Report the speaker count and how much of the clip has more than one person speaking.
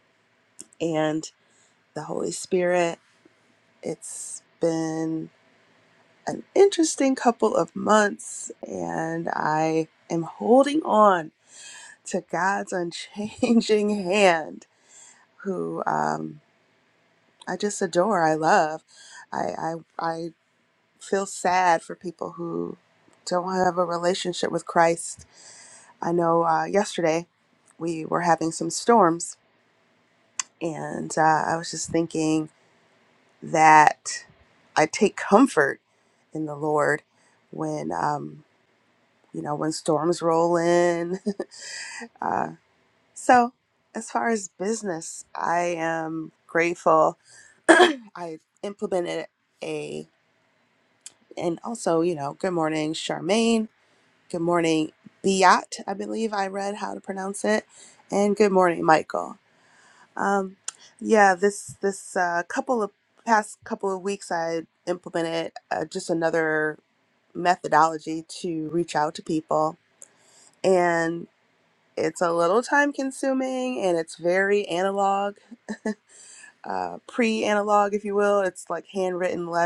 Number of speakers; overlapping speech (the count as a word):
one, no overlap